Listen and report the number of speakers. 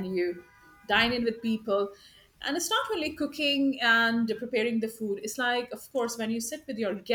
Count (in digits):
1